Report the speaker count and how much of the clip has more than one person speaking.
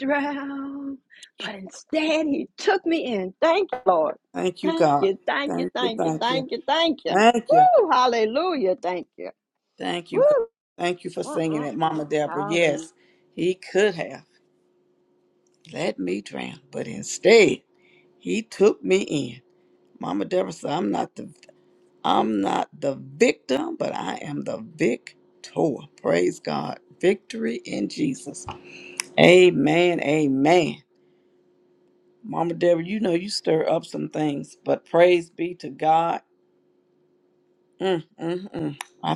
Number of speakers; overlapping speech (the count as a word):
two, about 9%